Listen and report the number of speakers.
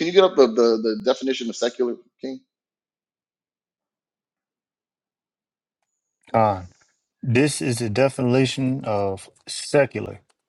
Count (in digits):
2